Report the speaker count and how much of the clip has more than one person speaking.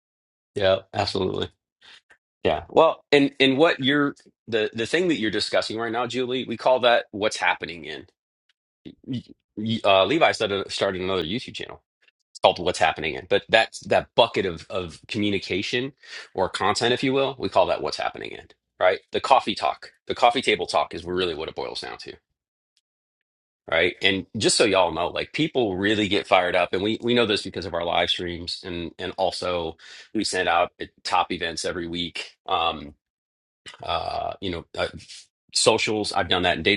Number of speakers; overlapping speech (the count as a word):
one, no overlap